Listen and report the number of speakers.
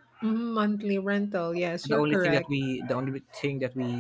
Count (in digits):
2